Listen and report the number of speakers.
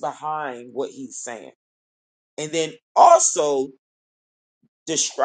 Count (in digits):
1